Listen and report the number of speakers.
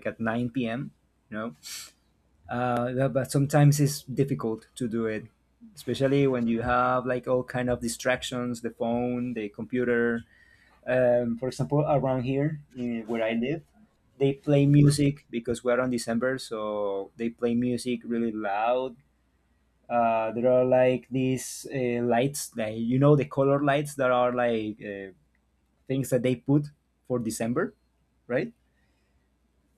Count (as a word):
one